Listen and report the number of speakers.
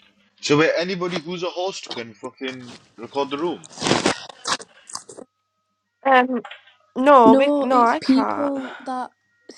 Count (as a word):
three